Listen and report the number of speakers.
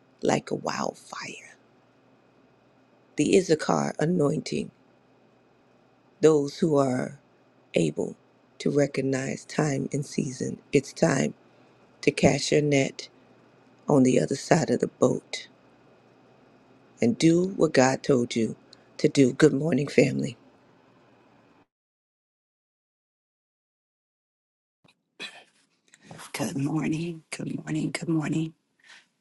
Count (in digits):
2